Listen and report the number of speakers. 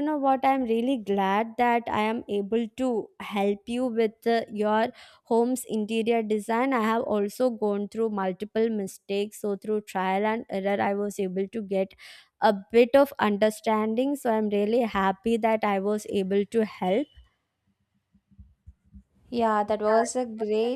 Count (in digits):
2